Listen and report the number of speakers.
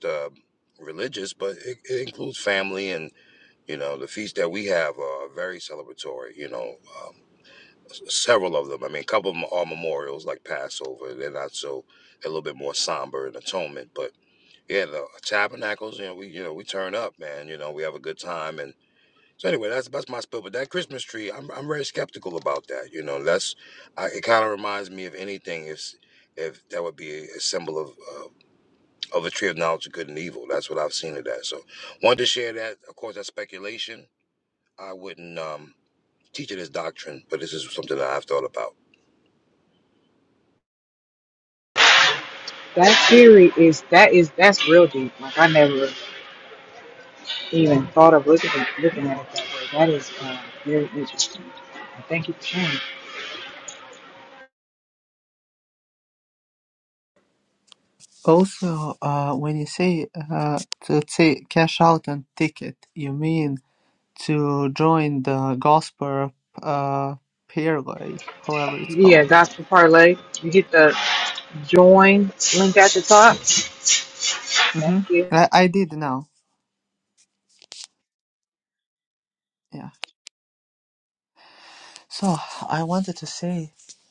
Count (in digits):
3